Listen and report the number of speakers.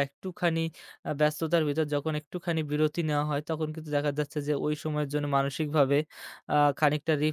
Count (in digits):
1